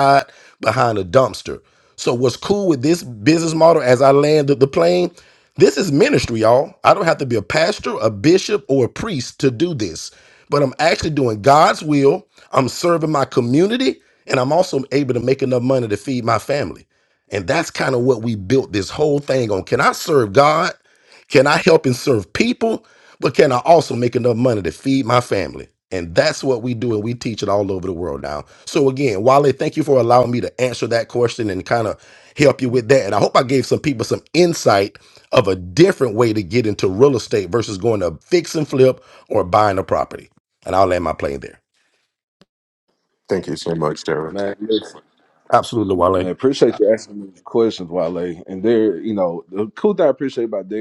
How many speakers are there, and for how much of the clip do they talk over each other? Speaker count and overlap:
three, under 1%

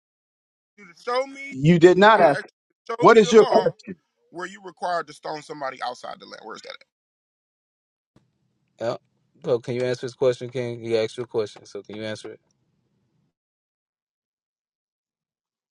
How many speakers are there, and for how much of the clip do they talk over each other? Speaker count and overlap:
three, about 6%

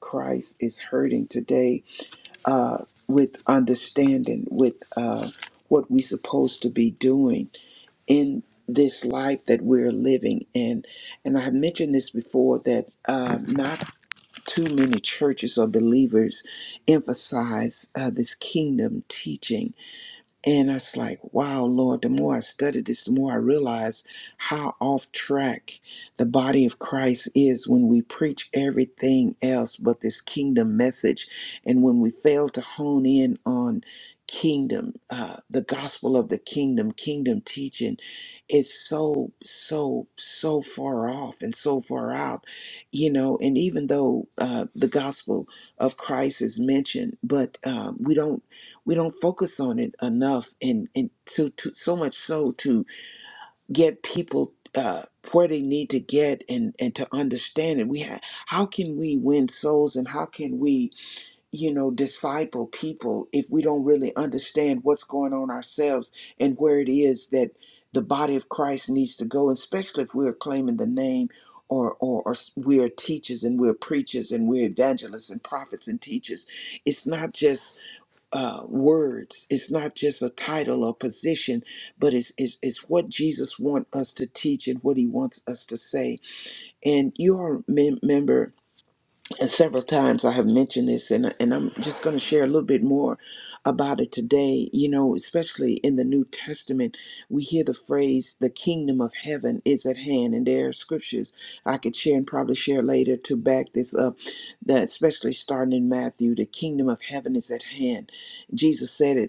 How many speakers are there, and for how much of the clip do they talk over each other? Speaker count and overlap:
one, no overlap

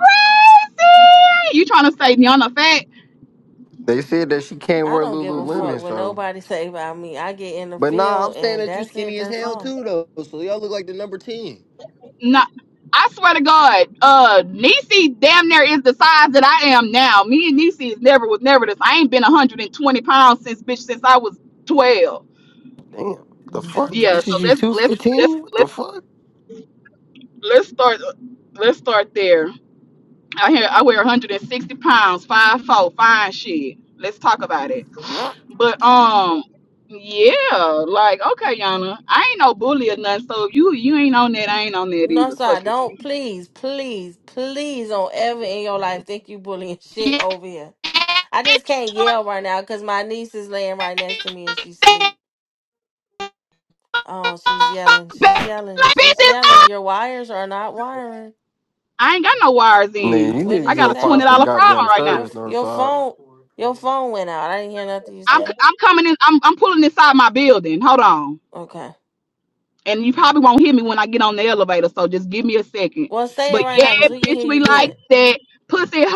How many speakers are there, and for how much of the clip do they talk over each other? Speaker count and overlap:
three, about 16%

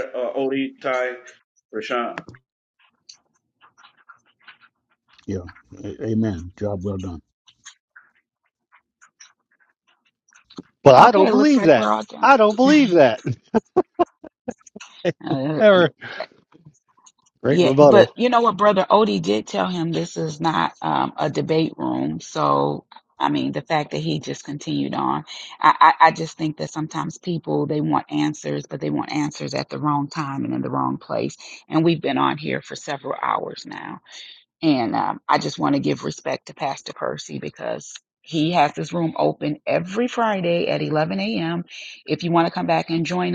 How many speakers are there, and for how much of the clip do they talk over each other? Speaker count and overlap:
four, about 4%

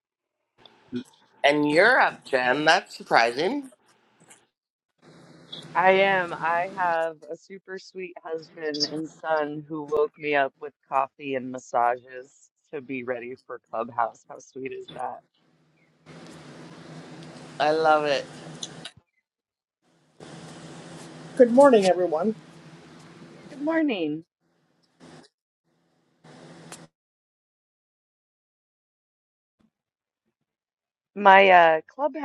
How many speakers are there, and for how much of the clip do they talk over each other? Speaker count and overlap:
three, no overlap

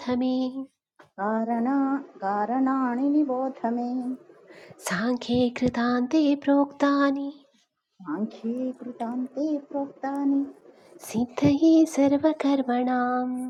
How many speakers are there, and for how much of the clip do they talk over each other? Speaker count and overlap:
two, no overlap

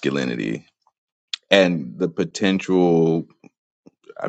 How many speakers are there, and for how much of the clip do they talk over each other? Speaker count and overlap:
one, no overlap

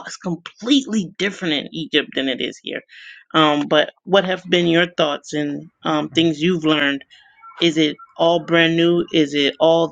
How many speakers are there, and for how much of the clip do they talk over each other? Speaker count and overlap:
one, no overlap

